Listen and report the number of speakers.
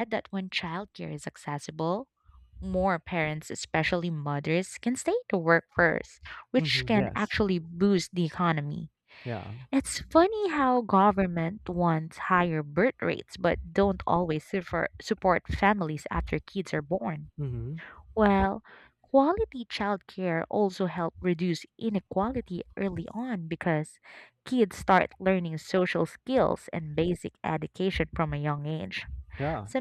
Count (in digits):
2